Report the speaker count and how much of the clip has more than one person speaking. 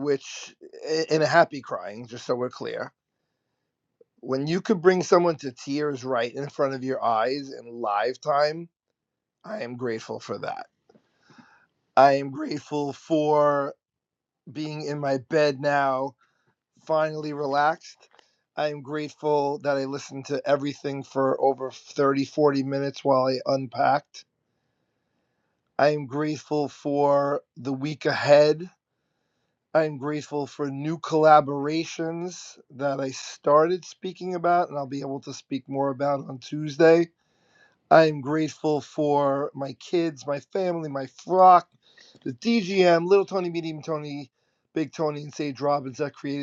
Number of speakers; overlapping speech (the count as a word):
one, no overlap